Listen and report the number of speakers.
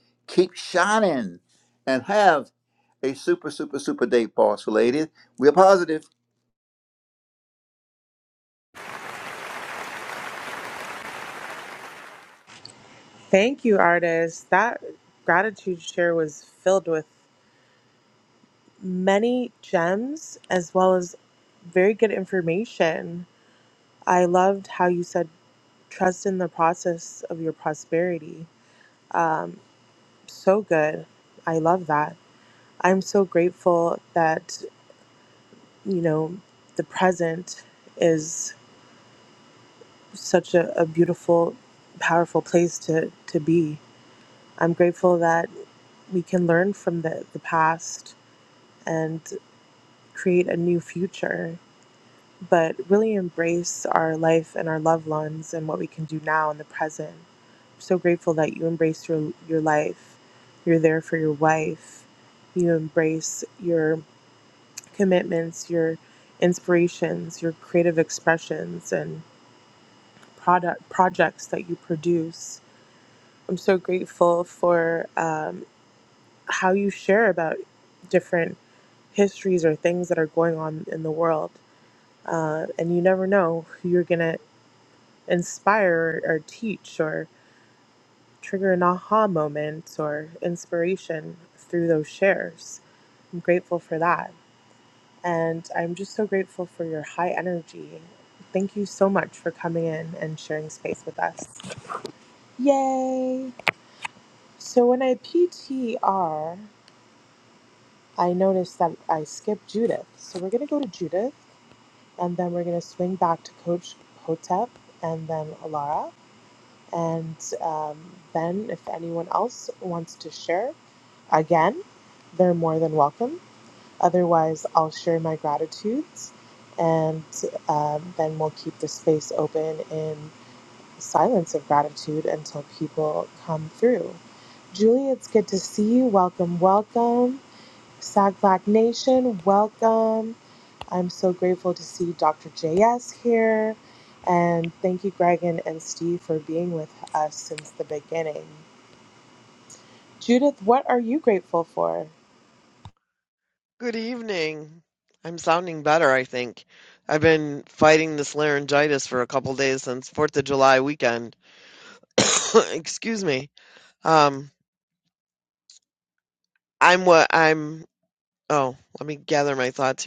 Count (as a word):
three